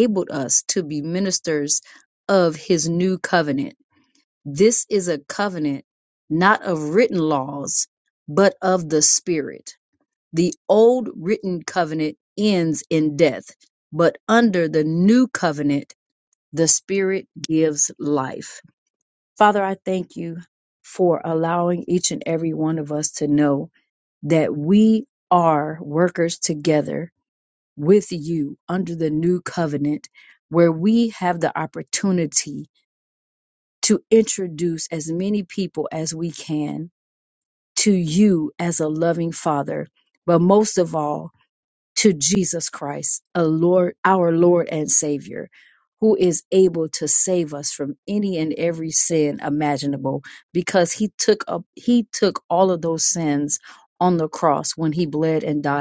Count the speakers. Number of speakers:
1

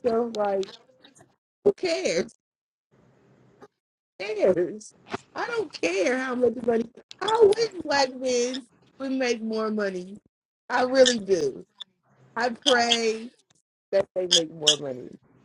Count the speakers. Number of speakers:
1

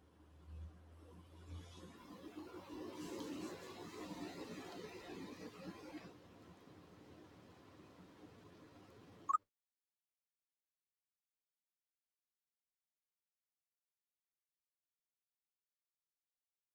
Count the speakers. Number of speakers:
0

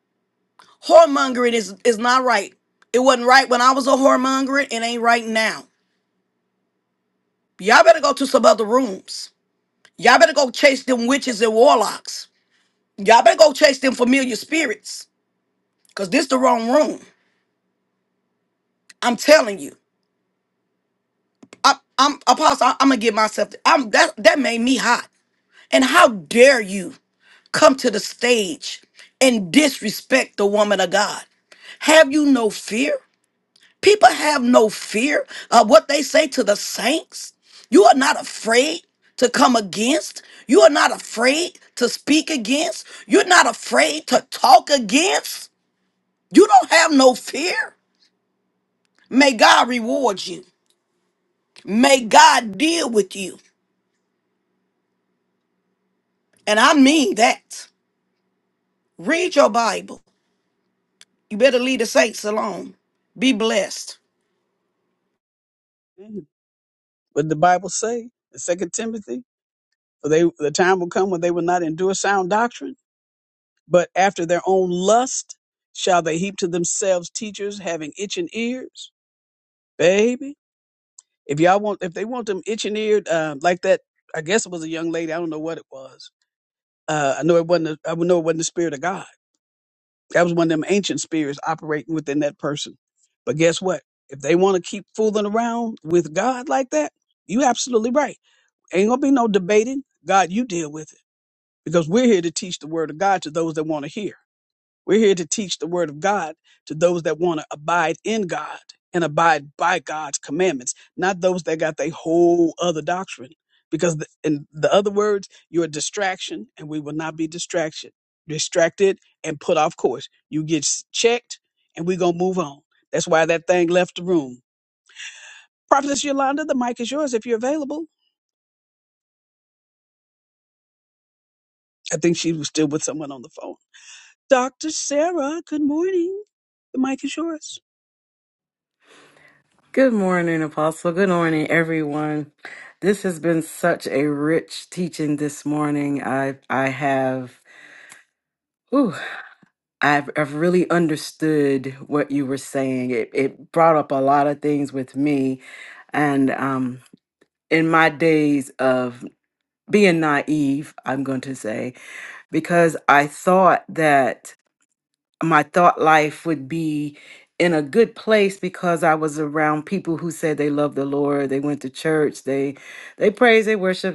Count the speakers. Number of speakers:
3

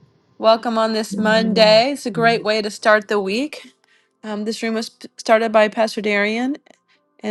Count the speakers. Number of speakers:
1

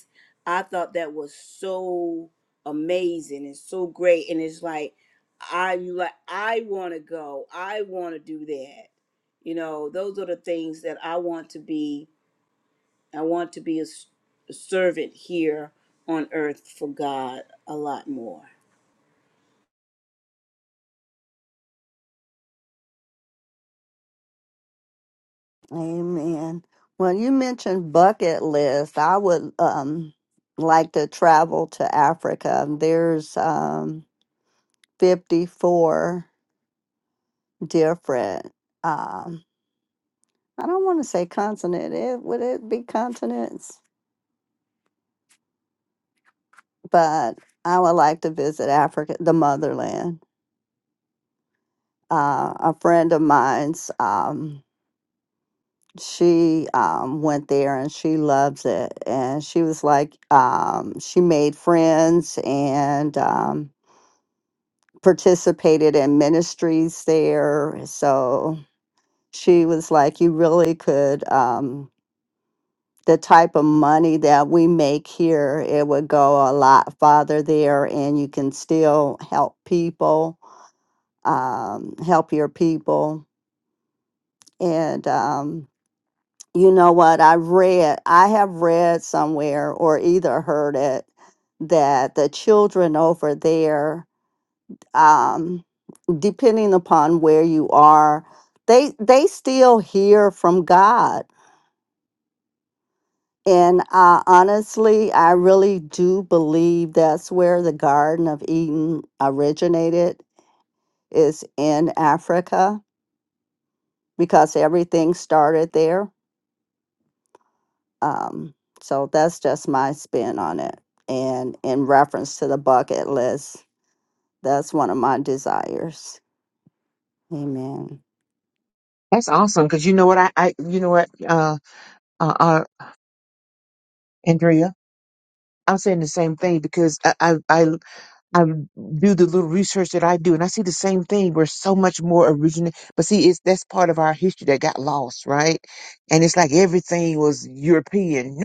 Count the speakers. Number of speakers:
3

